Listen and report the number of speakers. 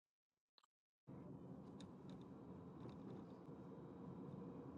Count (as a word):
zero